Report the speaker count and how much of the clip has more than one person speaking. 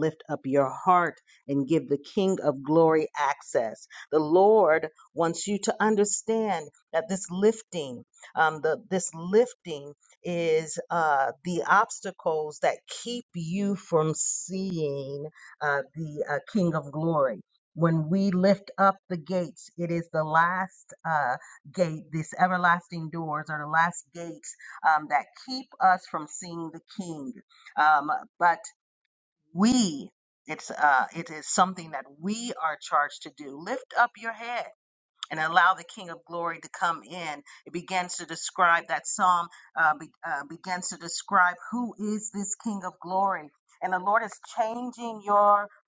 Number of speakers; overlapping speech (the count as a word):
one, no overlap